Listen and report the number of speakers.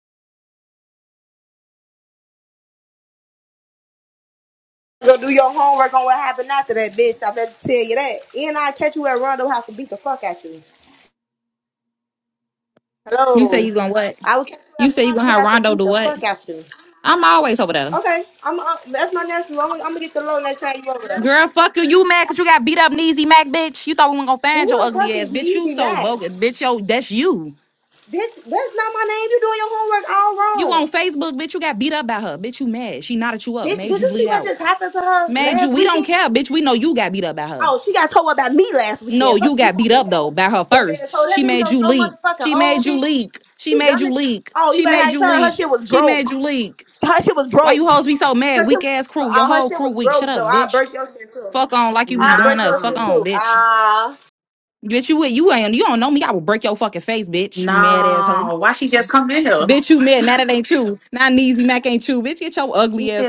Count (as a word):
three